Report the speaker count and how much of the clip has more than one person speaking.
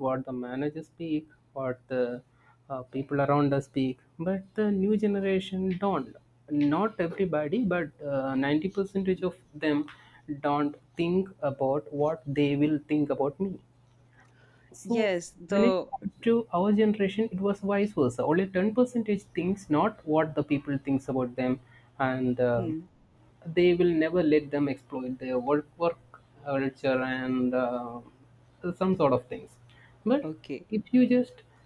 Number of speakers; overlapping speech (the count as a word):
two, about 2%